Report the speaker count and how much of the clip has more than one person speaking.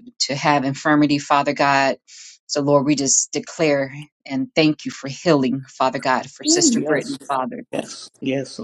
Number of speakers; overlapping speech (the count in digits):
2, about 9%